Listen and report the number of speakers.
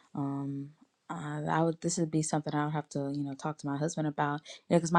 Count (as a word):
one